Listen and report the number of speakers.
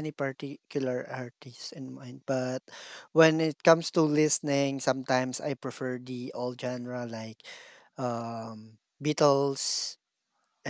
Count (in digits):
1